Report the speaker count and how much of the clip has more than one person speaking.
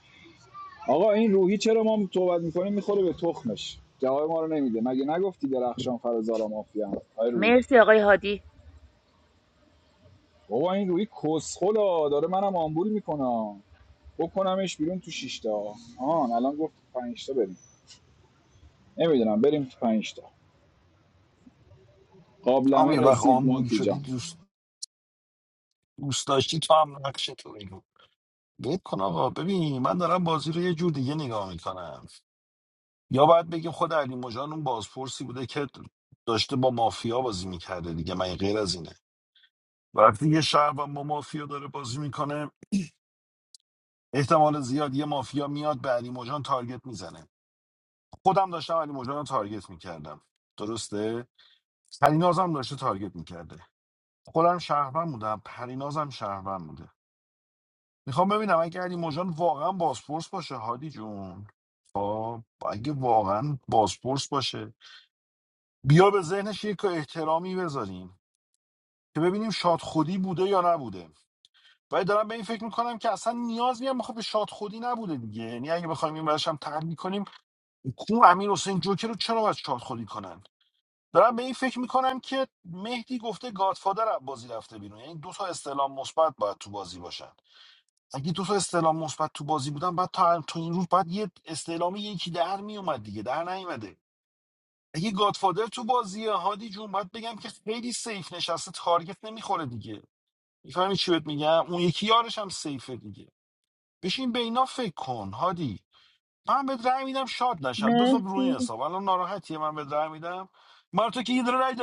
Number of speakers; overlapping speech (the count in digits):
3, about 2%